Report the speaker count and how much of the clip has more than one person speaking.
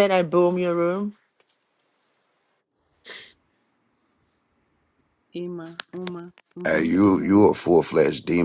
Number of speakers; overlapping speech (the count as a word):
three, about 9%